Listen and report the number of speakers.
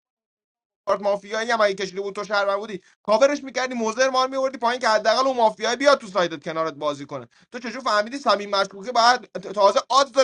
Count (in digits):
1